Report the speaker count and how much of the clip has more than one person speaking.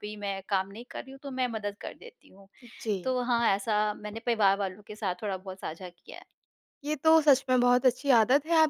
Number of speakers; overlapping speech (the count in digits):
2, under 1%